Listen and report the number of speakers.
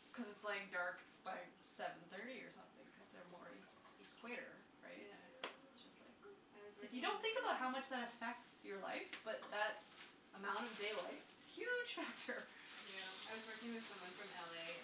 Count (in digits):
3